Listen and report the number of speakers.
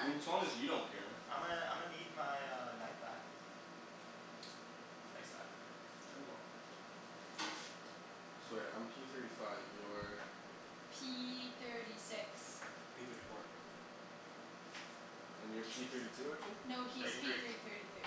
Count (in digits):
4